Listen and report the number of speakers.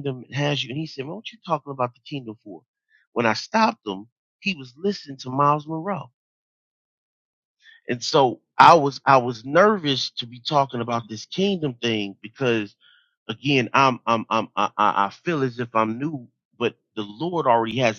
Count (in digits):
1